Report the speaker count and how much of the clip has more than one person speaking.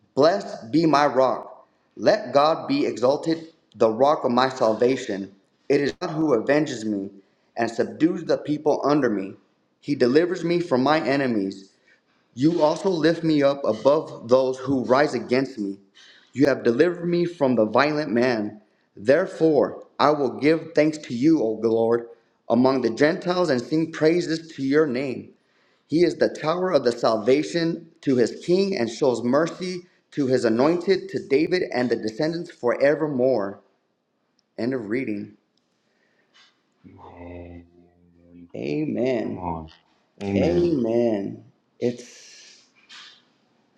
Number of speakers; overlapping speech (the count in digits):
2, about 1%